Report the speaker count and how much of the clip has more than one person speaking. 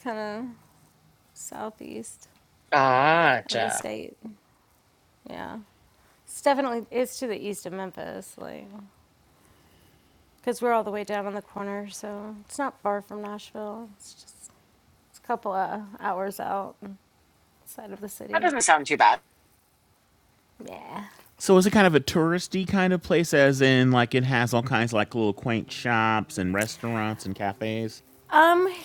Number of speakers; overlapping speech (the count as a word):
three, about 2%